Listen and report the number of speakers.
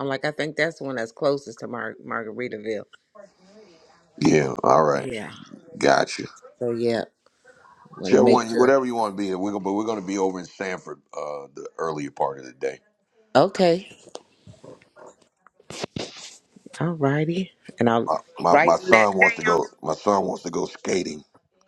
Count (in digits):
2